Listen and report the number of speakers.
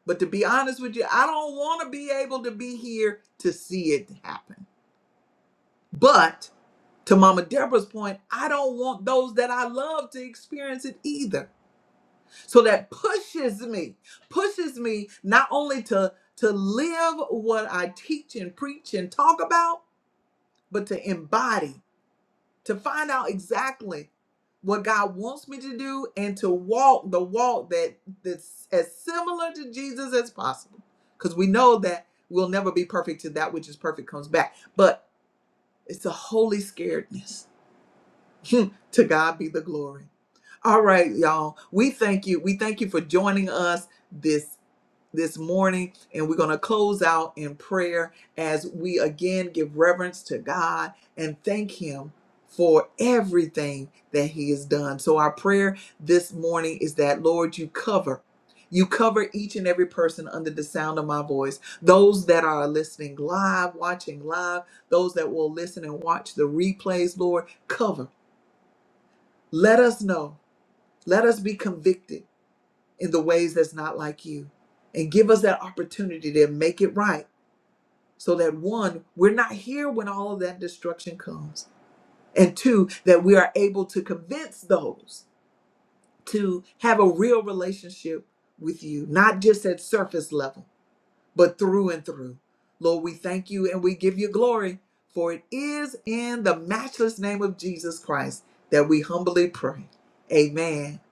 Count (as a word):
one